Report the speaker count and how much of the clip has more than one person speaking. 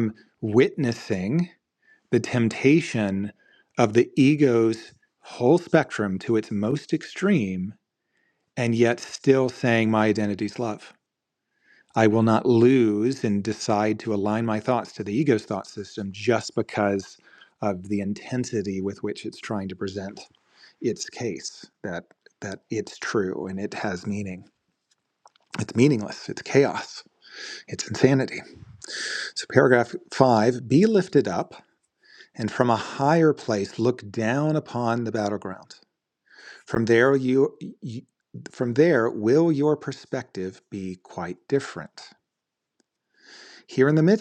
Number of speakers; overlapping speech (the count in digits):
1, no overlap